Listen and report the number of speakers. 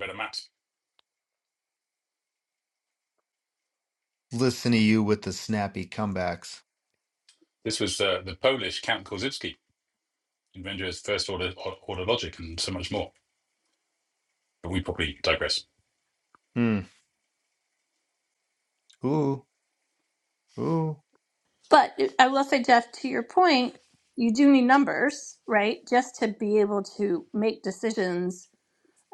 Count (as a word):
three